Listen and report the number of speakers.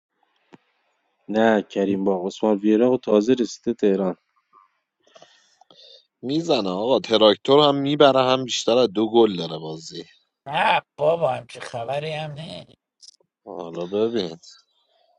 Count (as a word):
three